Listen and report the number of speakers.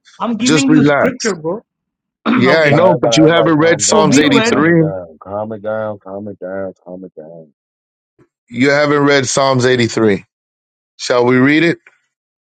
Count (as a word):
three